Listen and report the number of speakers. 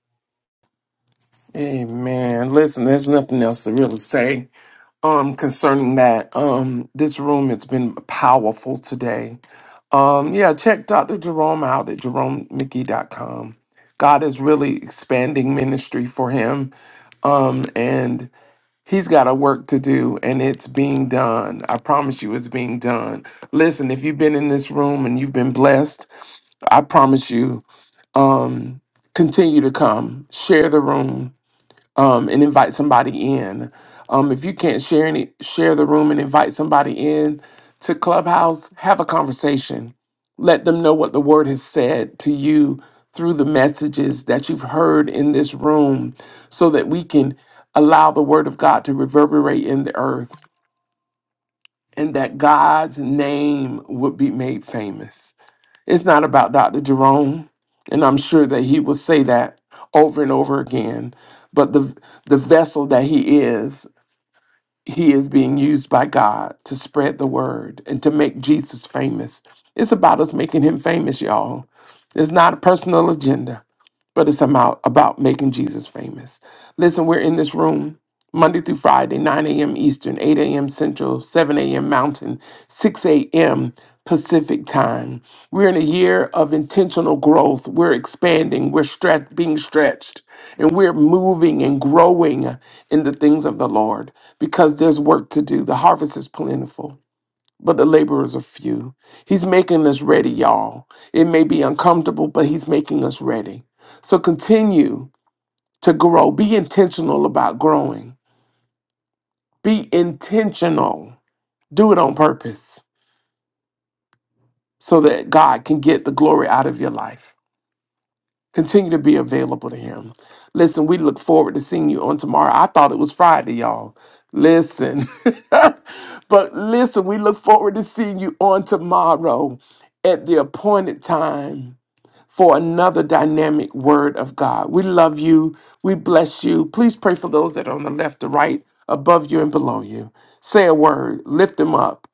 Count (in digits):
1